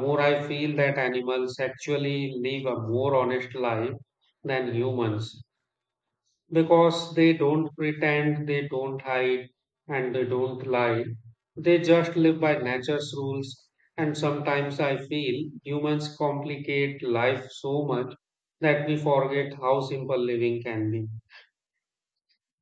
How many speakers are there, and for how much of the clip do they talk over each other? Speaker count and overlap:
one, no overlap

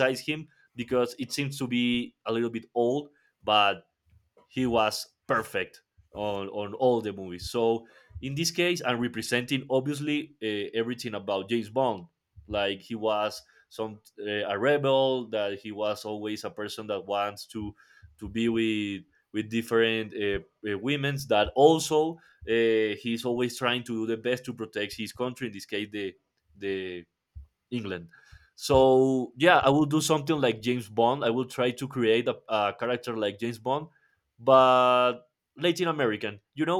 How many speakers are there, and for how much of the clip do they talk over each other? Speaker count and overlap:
one, no overlap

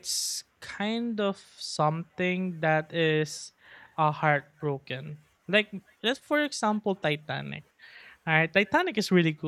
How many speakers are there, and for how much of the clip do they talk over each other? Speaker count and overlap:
one, no overlap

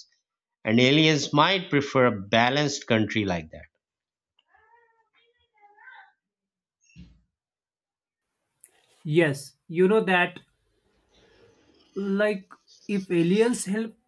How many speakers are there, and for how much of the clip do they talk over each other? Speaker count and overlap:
two, no overlap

